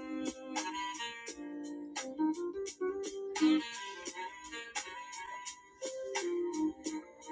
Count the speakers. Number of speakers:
0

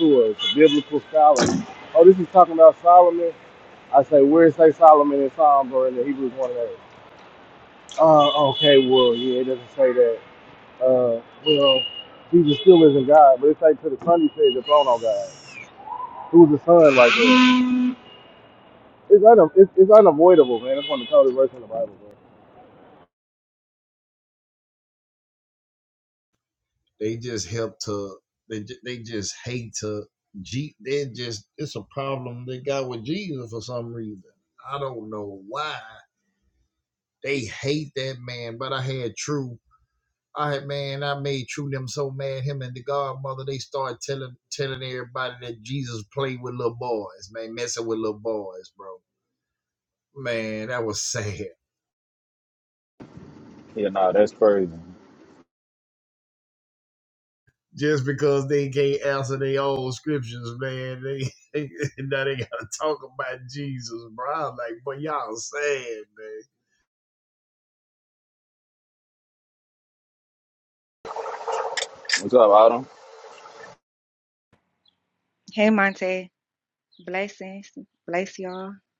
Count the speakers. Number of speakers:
4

